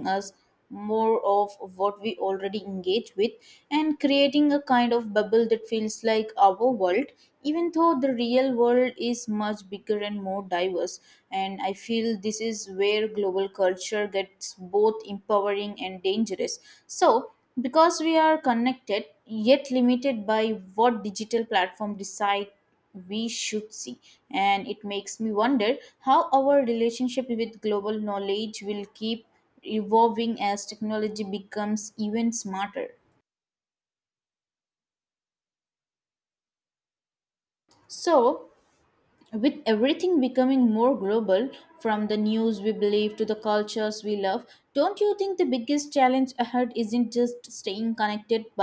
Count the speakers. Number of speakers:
one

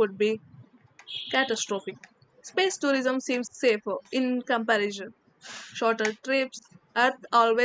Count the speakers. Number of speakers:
one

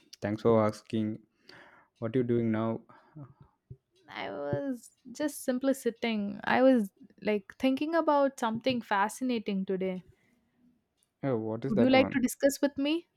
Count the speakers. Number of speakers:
two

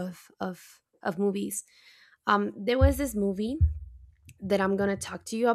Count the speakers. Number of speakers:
one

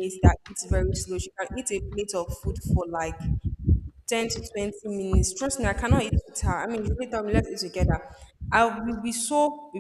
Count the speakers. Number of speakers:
one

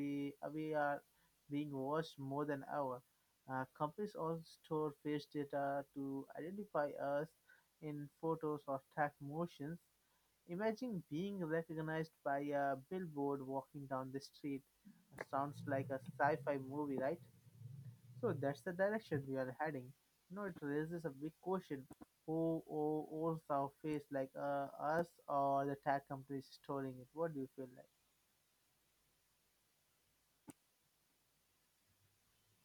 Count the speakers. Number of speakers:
one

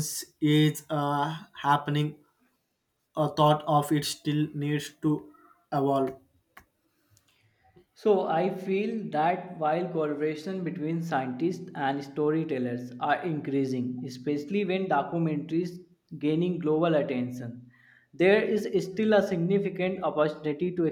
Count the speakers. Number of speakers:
two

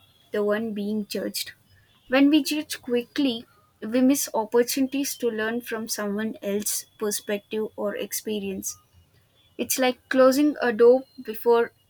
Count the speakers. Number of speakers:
one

